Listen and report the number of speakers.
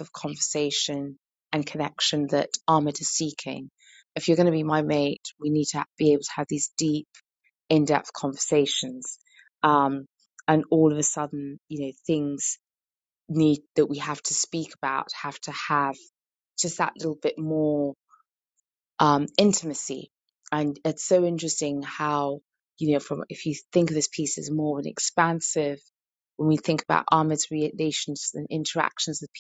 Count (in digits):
1